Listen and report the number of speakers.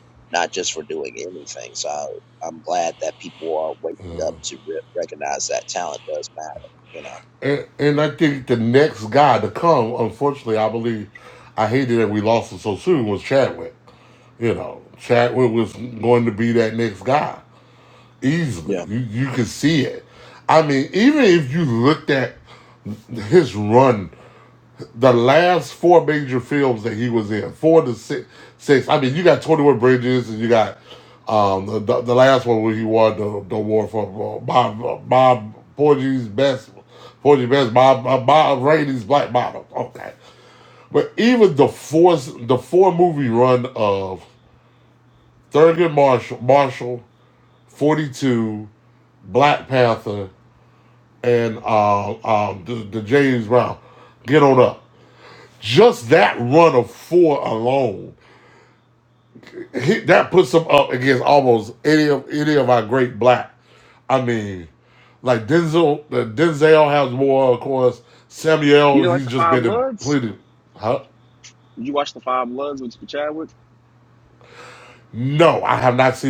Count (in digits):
3